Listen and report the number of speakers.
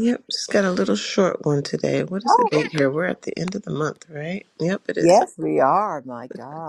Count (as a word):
two